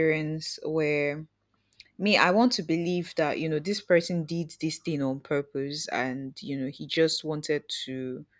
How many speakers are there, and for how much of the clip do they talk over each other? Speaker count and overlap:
1, no overlap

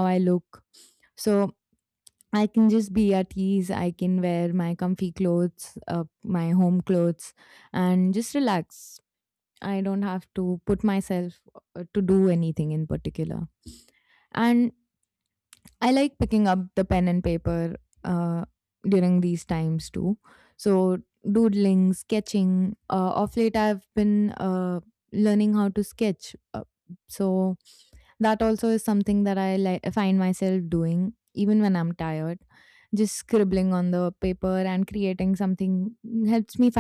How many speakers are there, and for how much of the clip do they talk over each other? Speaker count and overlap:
1, no overlap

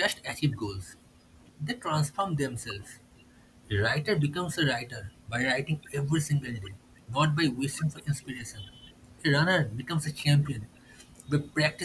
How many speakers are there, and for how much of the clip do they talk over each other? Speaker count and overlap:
1, no overlap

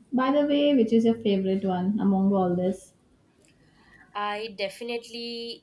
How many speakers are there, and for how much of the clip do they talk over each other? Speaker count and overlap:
2, no overlap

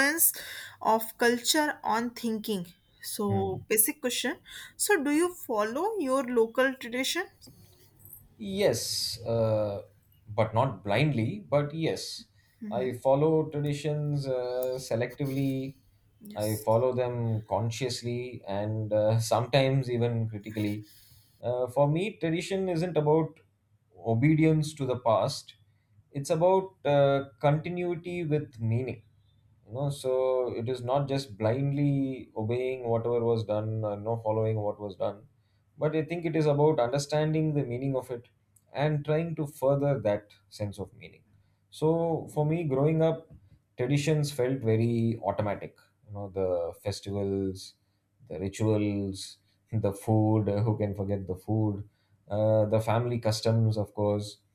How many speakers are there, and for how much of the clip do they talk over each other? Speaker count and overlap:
2, under 1%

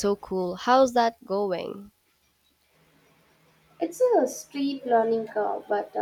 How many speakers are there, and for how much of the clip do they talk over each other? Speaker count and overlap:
2, no overlap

